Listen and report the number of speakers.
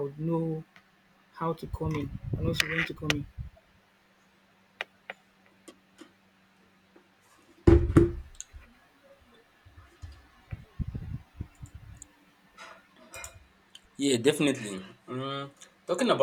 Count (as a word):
two